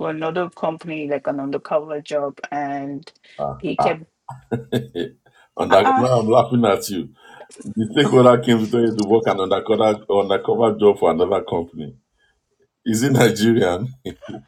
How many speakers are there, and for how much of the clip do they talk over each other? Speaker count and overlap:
two, about 5%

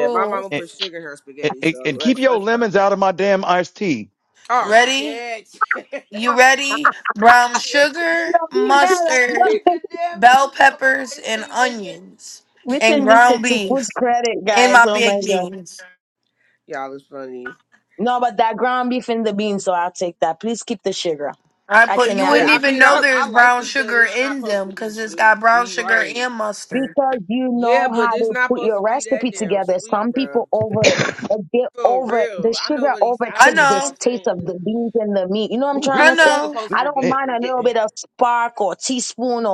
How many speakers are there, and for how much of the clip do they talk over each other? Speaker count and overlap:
four, about 49%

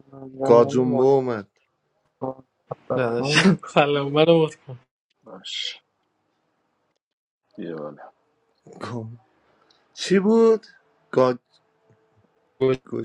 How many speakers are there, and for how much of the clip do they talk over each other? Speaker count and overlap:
four, about 8%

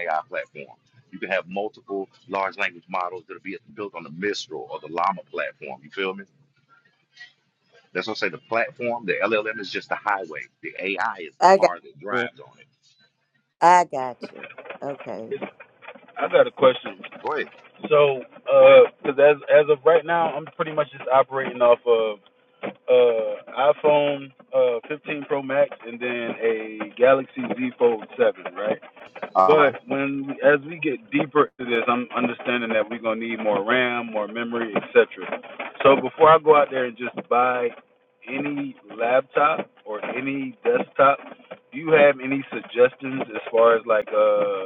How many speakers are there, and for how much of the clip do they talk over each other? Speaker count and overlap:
three, about 2%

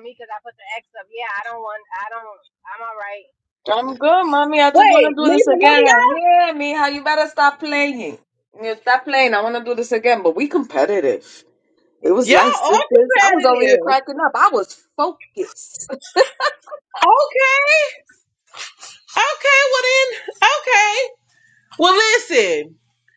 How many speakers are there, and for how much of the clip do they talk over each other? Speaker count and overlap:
three, about 13%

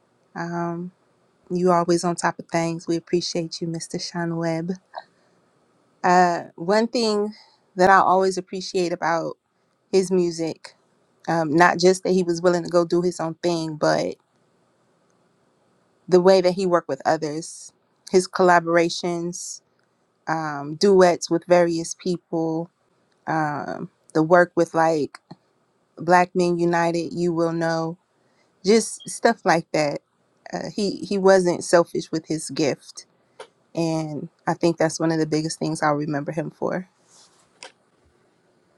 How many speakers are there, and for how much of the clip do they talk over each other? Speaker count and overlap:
one, no overlap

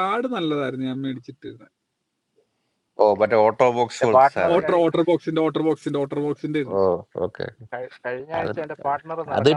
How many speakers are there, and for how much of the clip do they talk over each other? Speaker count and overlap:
three, about 14%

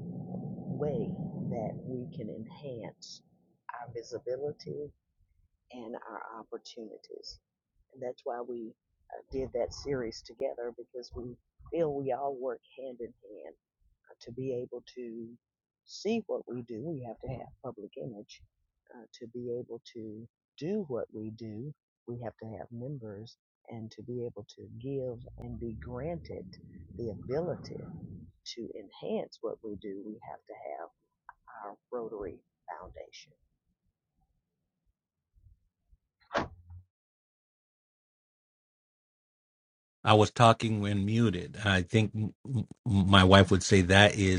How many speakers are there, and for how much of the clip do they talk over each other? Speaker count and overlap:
two, no overlap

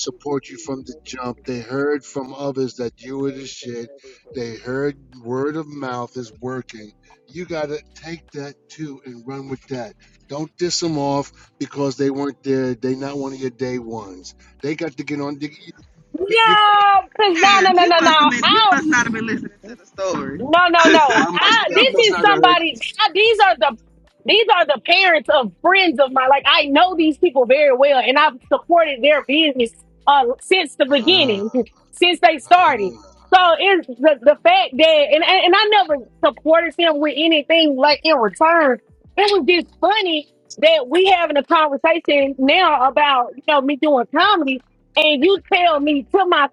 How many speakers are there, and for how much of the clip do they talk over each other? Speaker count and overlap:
three, about 6%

